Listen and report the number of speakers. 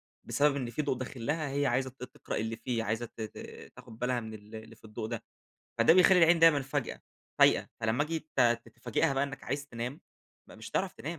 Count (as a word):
one